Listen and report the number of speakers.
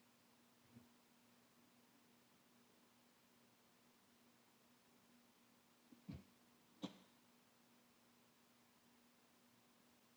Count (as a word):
zero